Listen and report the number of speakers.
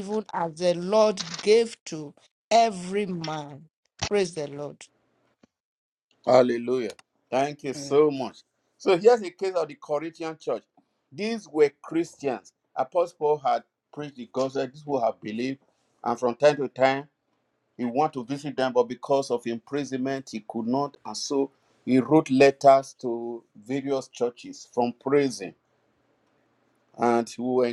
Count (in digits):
2